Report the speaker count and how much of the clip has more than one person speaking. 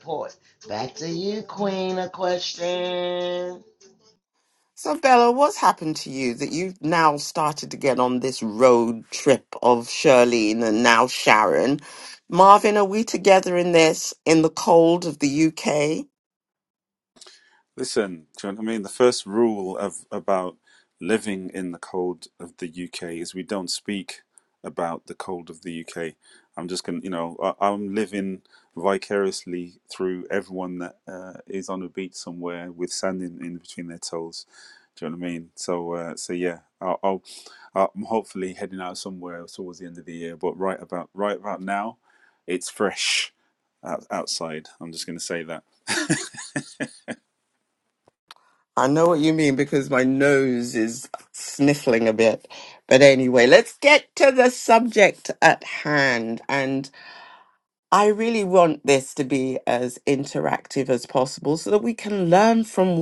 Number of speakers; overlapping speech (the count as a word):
three, no overlap